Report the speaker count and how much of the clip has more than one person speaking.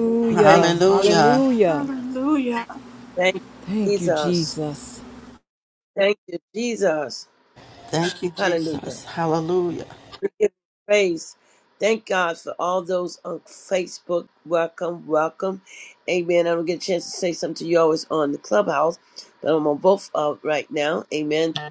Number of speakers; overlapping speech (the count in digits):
4, about 10%